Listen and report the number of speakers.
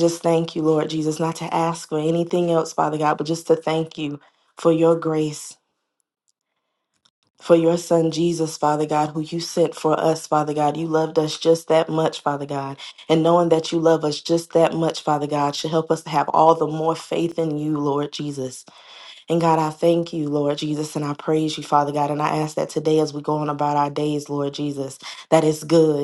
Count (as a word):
one